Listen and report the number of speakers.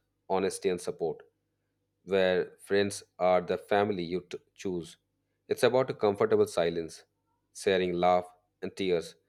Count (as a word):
one